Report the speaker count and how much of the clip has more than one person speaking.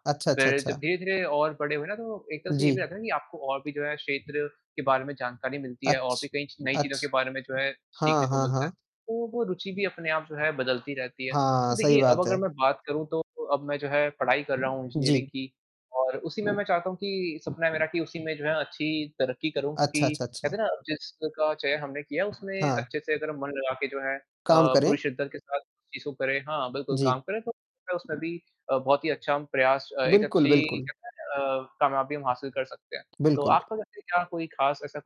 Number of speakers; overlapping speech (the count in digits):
2, about 16%